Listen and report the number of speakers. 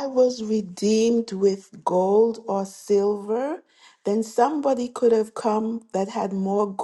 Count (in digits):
1